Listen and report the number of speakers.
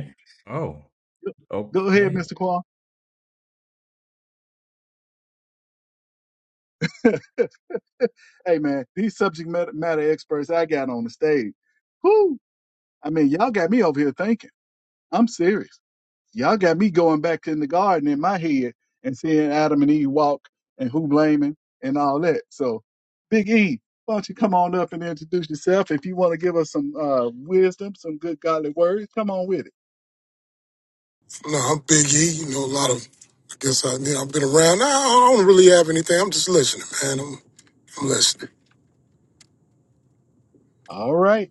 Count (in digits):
3